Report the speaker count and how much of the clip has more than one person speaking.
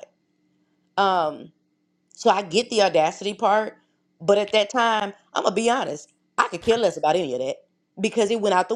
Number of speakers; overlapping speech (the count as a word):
one, no overlap